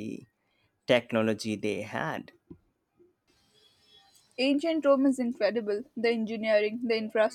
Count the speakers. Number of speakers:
two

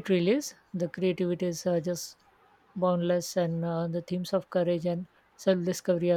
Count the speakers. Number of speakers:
one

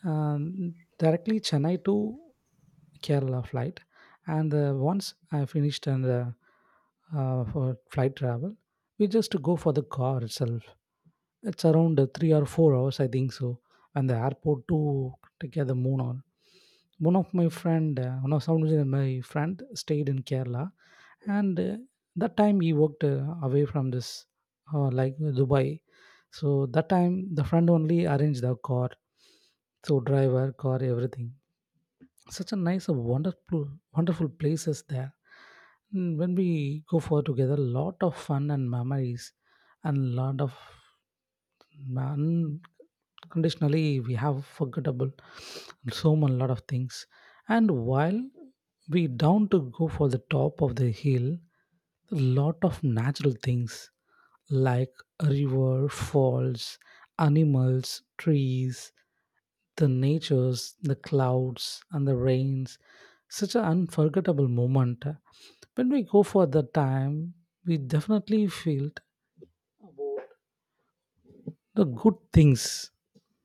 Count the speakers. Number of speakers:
one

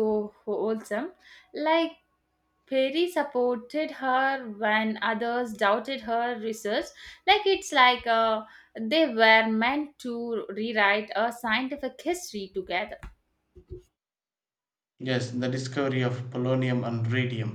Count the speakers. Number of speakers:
two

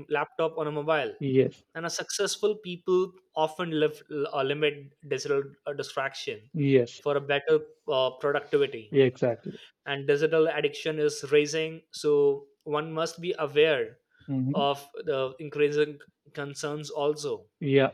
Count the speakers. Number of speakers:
two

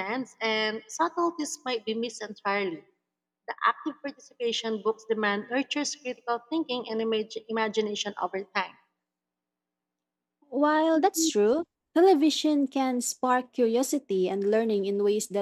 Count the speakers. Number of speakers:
two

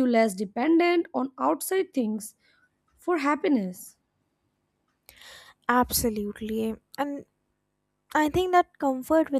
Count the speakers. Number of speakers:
two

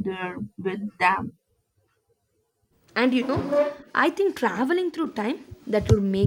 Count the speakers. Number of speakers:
two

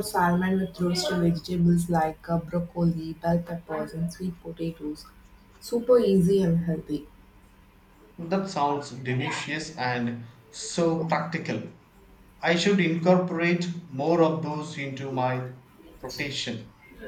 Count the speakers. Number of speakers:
two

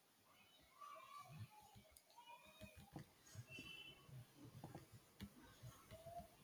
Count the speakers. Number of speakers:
zero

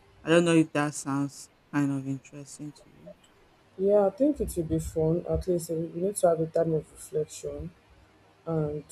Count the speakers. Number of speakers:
two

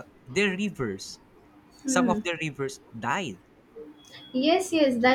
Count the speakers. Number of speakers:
two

